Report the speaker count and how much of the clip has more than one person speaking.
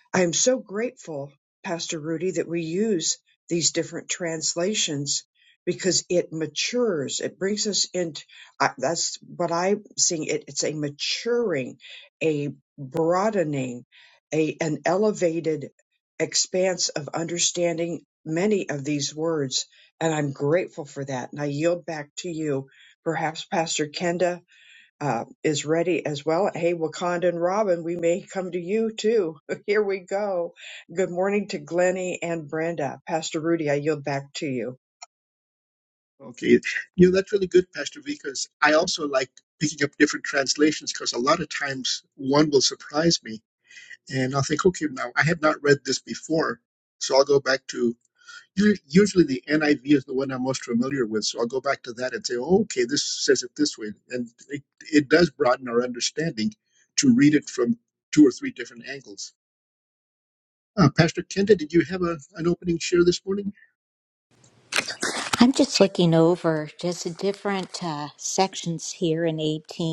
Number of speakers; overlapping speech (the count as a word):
three, no overlap